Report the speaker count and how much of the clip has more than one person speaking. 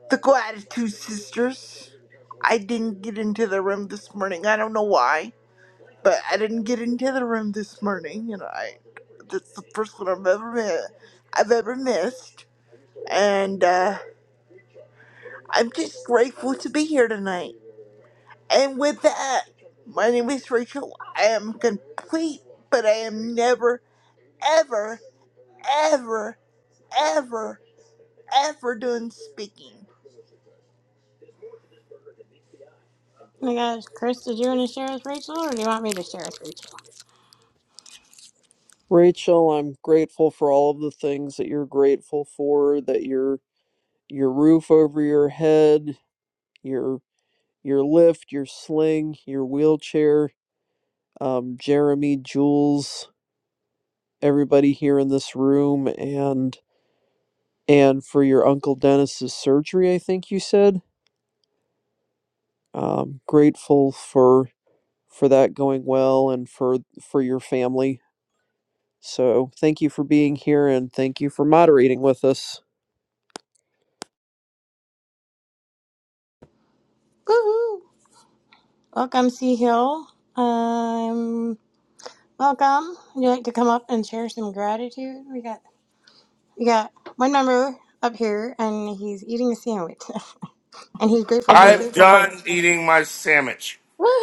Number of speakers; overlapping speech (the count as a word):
four, under 1%